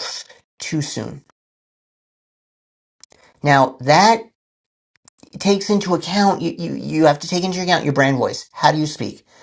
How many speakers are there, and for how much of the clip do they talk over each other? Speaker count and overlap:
one, no overlap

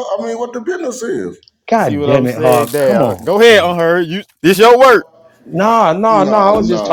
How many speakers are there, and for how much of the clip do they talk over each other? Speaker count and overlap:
three, about 38%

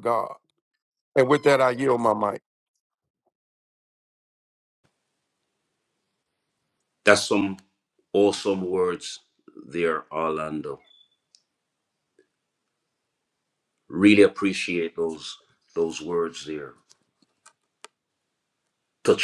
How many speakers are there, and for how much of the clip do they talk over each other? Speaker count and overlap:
two, no overlap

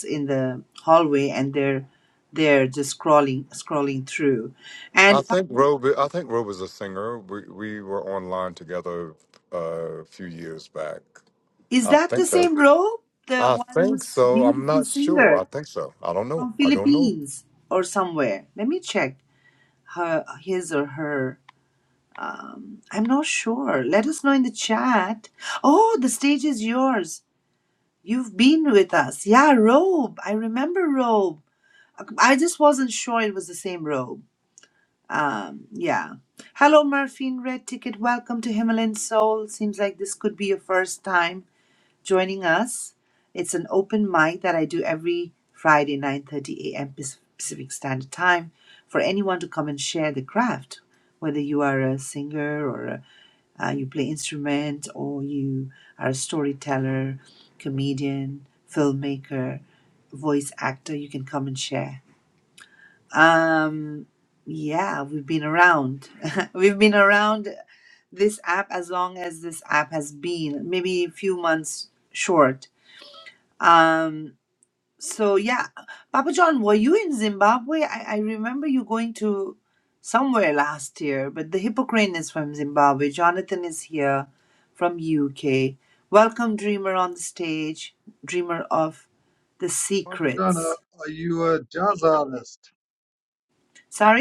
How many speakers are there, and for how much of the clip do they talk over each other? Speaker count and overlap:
three, about 4%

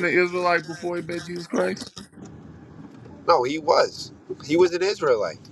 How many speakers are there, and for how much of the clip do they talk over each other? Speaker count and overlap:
two, no overlap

